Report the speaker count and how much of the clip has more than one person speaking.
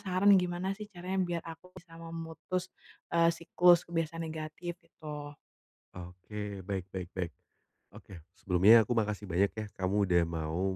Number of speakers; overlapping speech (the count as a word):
two, no overlap